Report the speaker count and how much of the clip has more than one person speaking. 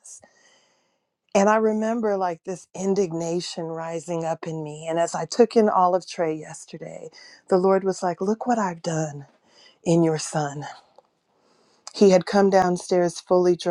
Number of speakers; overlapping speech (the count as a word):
one, no overlap